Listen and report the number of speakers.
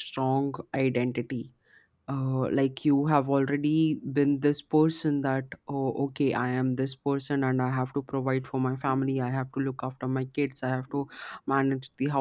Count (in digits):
1